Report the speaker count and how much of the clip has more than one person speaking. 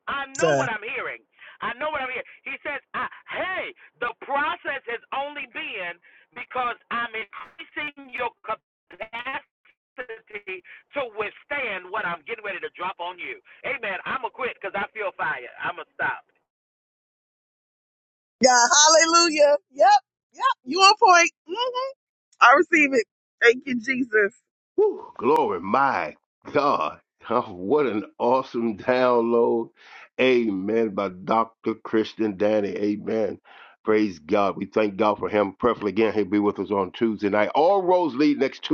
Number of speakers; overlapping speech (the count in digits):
3, no overlap